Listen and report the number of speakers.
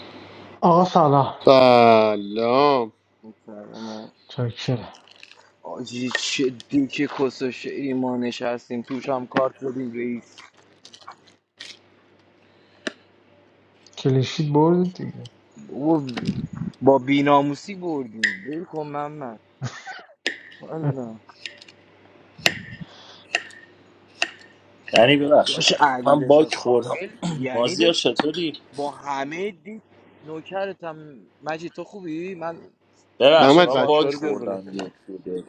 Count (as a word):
four